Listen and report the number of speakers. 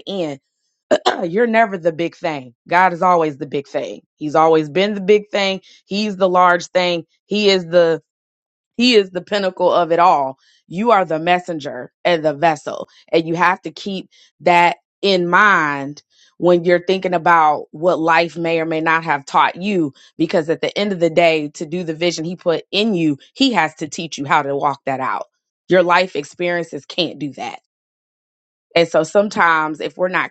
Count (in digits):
1